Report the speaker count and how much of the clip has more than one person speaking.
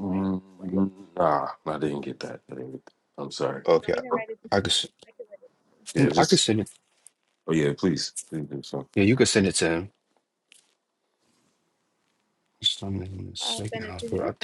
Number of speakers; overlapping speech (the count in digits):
3, about 13%